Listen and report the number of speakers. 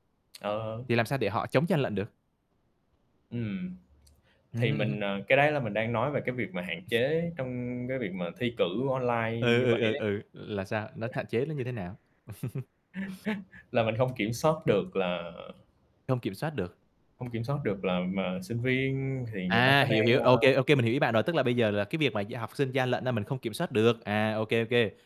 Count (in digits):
2